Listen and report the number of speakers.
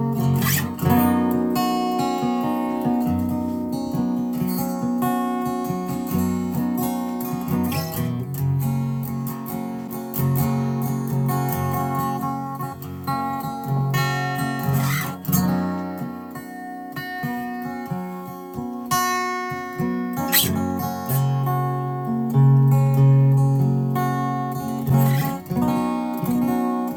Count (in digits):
0